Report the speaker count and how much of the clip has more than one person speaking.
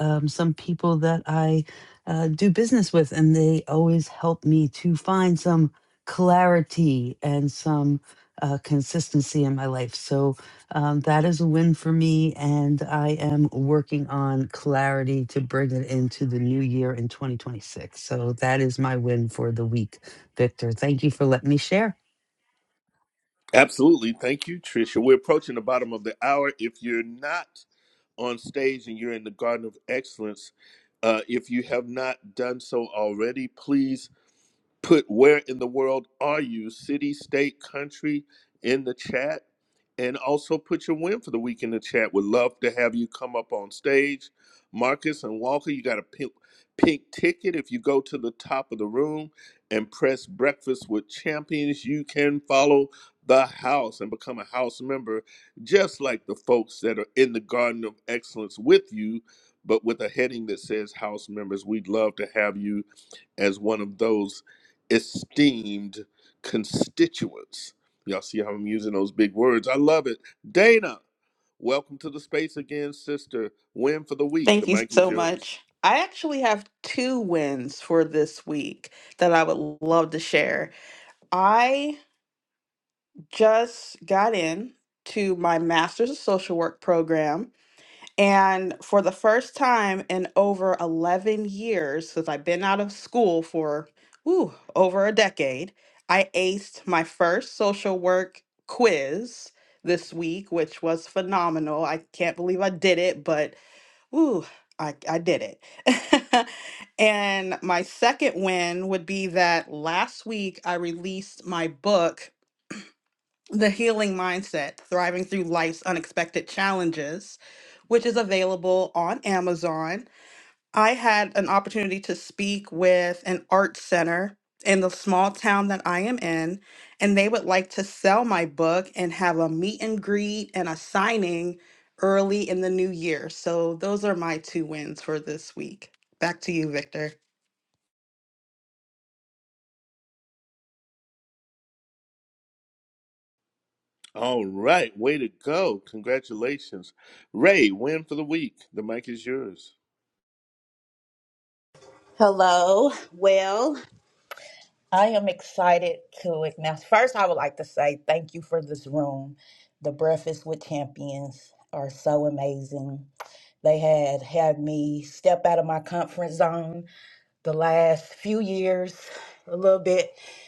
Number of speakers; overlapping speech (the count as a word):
four, about 1%